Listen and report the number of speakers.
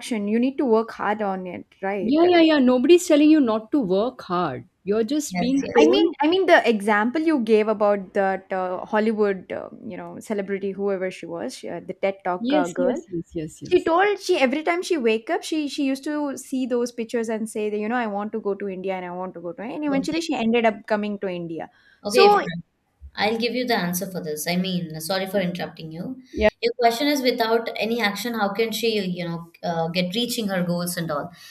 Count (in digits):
3